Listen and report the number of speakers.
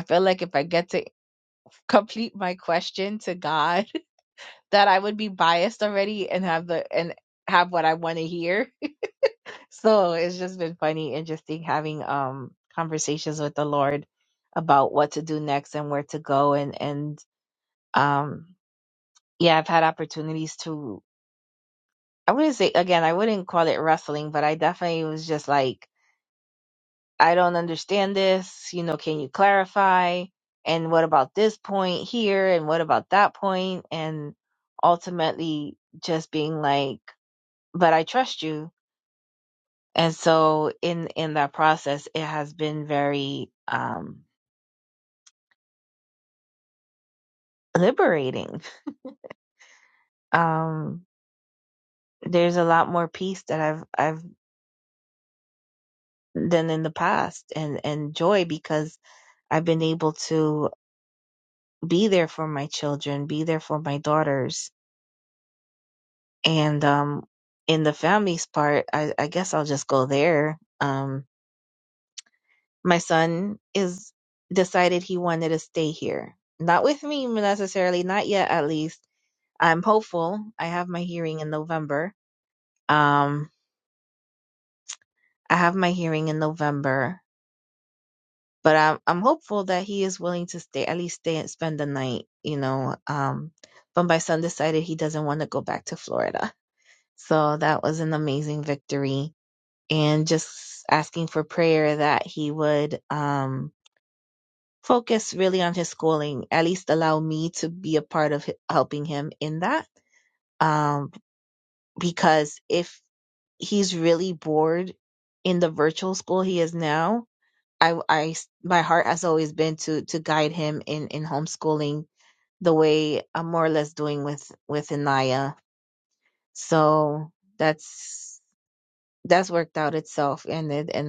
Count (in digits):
1